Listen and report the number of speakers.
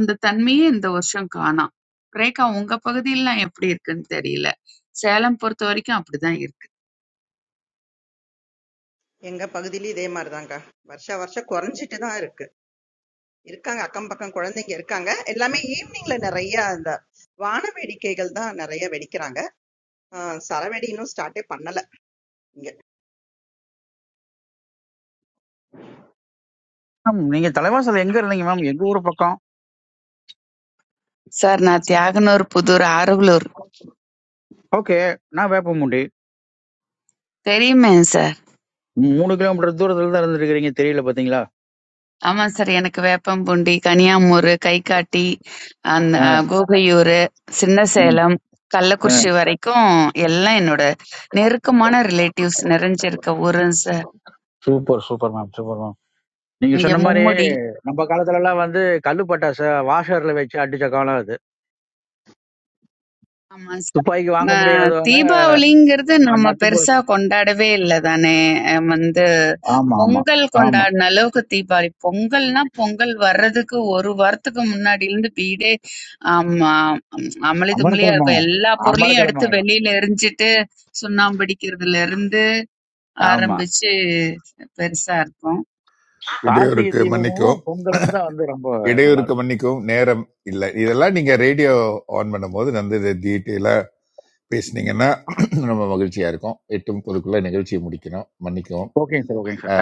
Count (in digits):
4